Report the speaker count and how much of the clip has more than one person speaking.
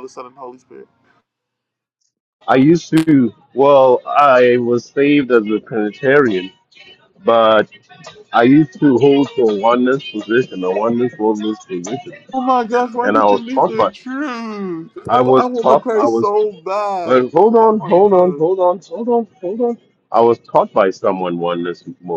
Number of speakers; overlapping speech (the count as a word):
two, about 13%